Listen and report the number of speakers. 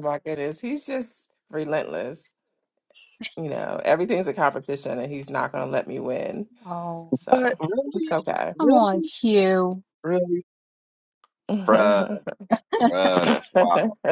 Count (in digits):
3